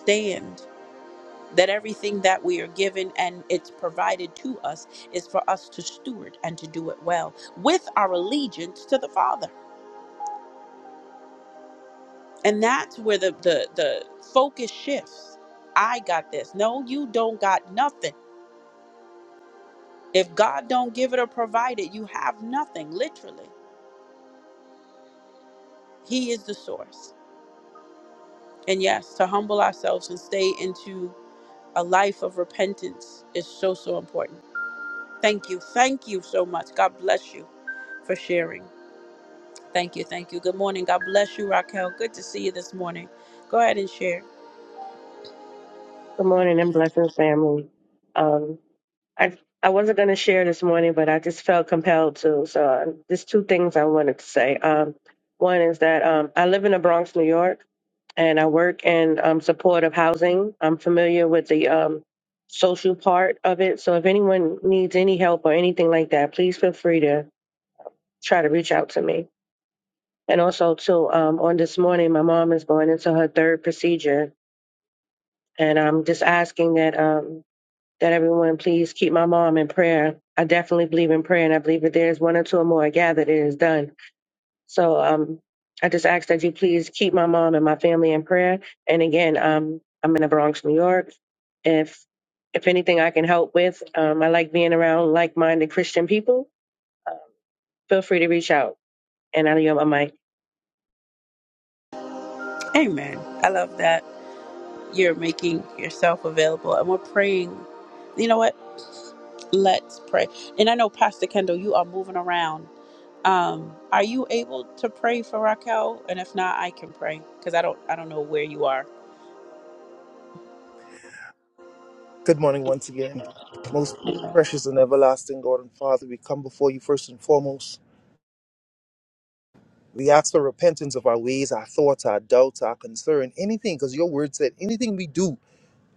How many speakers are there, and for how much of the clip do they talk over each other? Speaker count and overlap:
3, no overlap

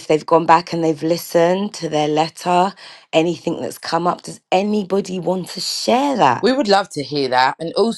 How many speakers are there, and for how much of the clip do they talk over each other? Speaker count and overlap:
2, under 1%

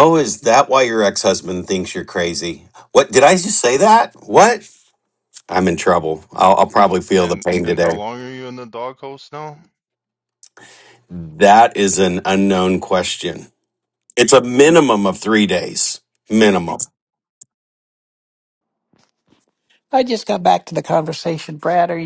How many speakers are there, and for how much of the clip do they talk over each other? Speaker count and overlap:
3, about 4%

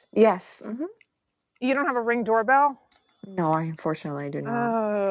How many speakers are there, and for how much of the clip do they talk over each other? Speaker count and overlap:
2, about 5%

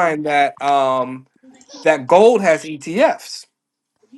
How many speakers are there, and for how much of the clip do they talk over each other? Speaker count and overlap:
1, no overlap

